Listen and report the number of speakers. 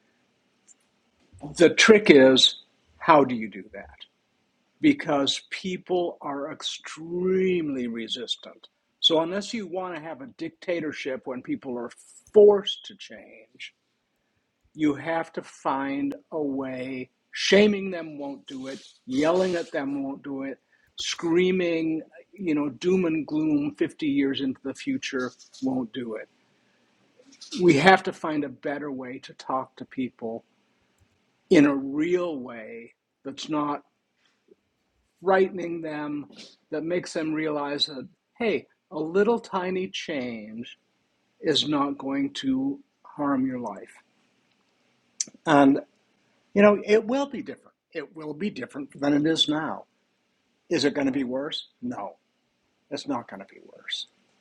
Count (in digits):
1